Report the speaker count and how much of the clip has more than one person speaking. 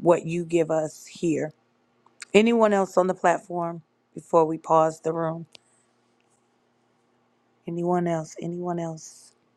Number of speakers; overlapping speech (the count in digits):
1, no overlap